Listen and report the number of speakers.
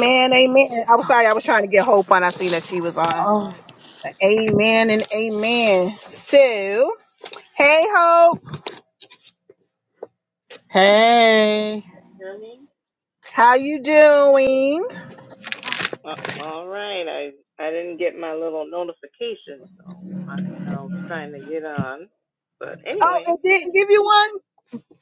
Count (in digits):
3